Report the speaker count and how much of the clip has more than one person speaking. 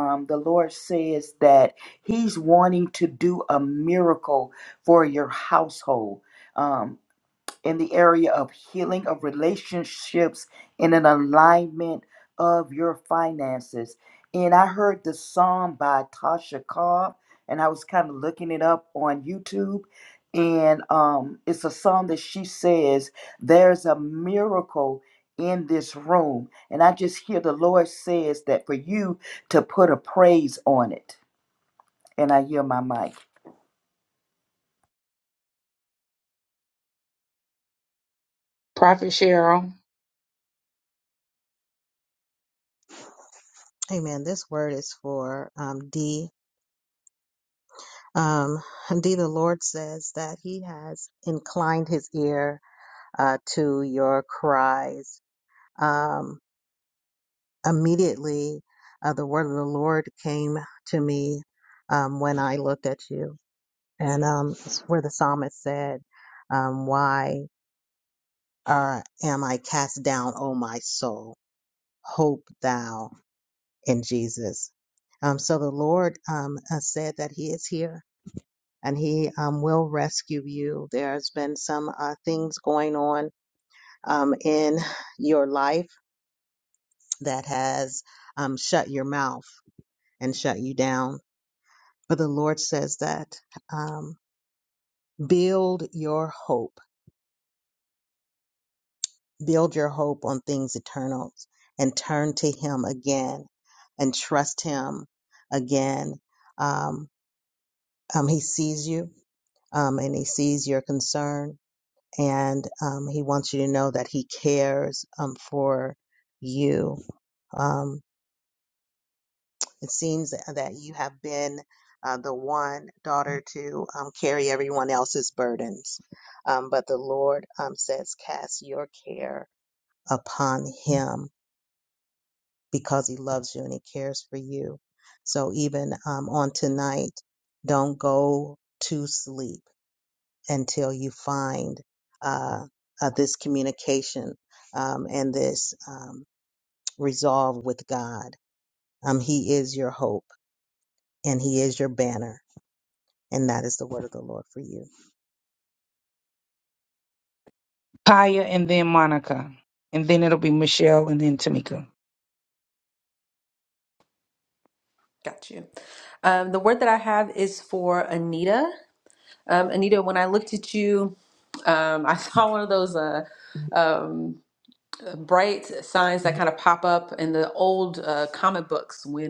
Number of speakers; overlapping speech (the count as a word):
four, no overlap